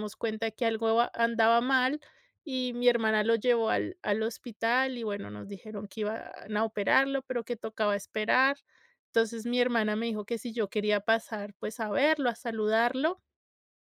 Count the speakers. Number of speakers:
one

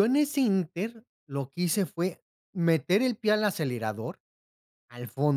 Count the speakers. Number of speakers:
one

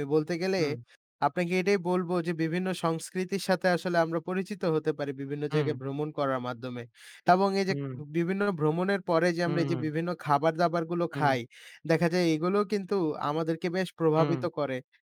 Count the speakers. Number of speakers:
two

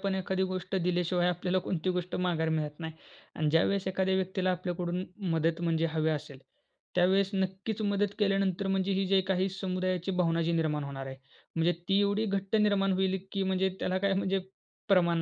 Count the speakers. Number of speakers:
one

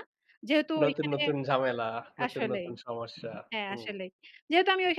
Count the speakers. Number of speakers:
two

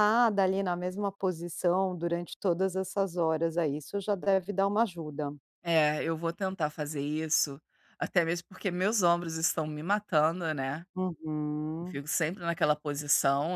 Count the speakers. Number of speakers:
two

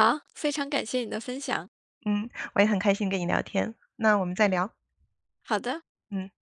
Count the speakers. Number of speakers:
two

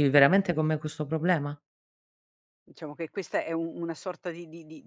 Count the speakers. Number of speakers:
two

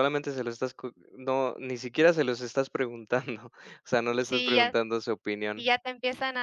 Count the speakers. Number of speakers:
two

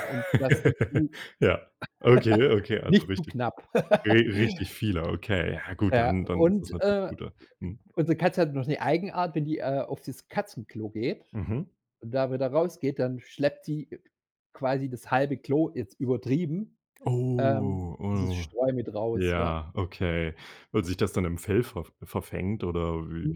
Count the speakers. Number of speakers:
two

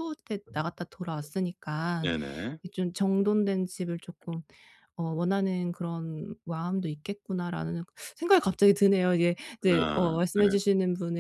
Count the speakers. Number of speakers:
two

